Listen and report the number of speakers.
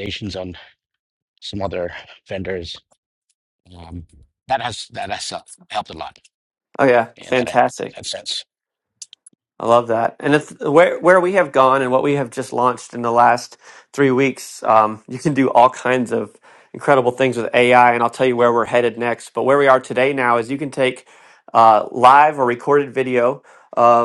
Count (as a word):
two